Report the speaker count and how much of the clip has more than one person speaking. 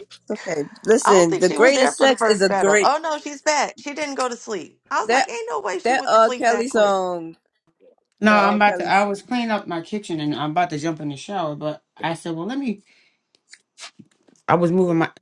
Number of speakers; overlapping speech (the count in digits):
3, about 25%